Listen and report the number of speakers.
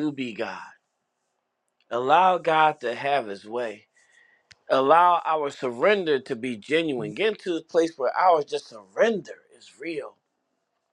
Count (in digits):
1